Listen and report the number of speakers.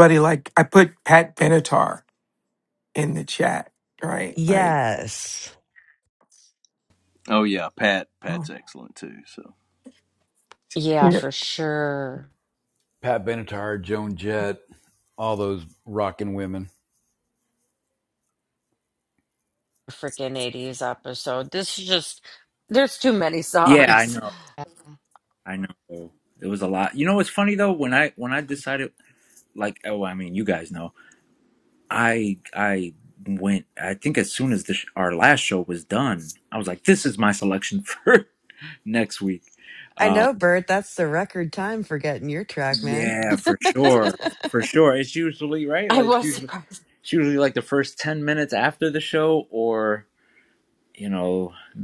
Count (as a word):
six